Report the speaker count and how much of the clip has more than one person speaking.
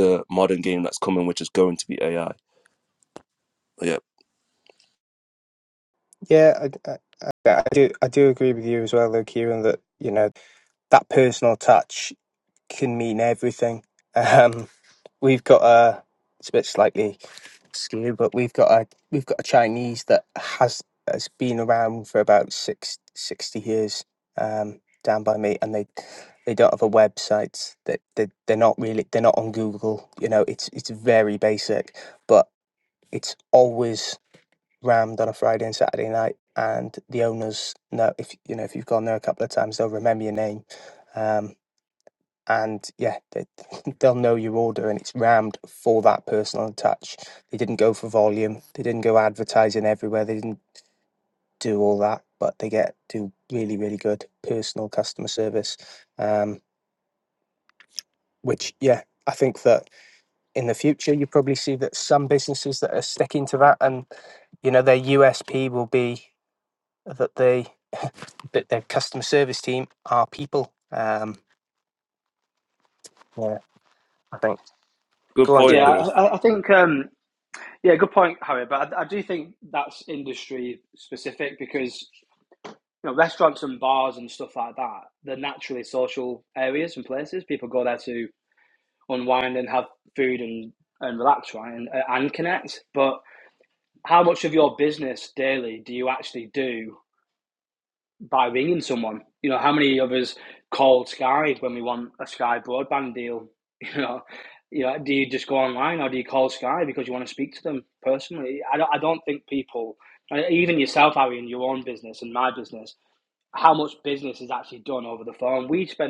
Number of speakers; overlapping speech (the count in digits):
3, about 1%